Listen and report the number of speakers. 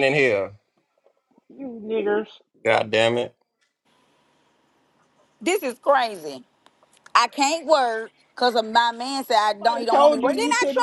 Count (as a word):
three